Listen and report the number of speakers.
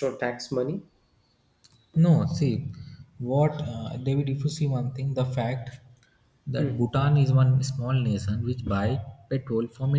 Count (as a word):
two